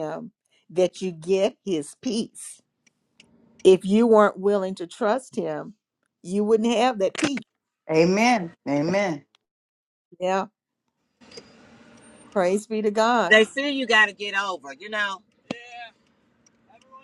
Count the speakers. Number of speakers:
3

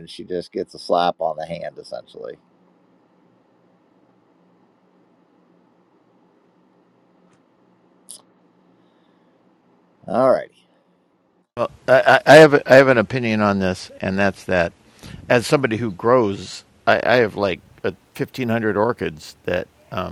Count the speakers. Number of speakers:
2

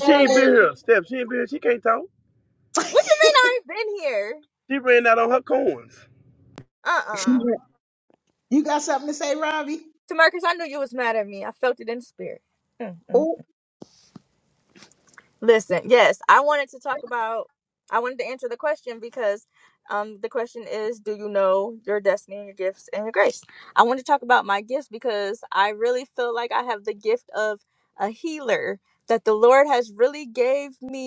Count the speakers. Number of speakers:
3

